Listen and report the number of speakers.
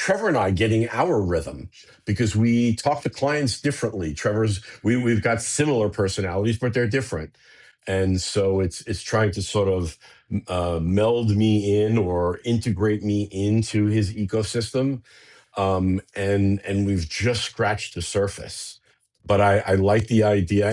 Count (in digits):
1